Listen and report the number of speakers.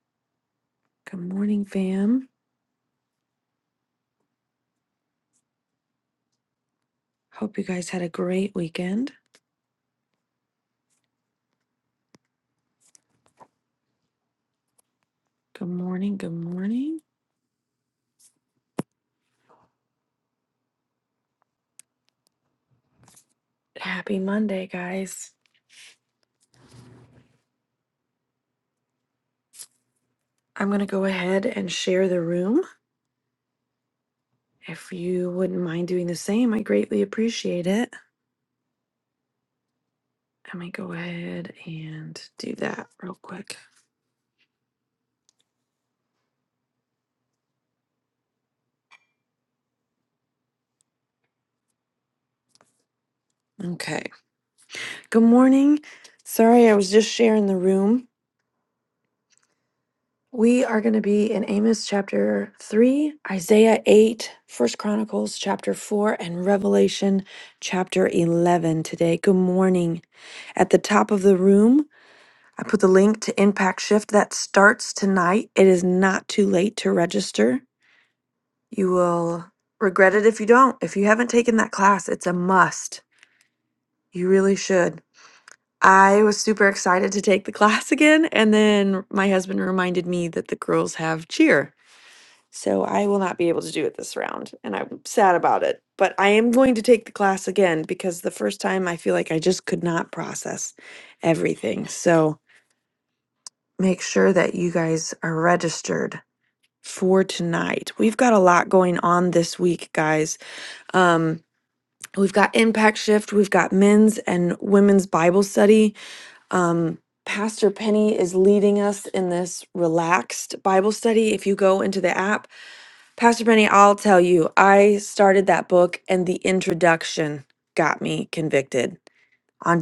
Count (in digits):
1